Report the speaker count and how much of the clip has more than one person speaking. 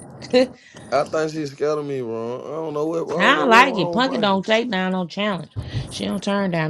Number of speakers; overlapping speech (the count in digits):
2, about 18%